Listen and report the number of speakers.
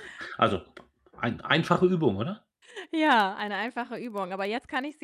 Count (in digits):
2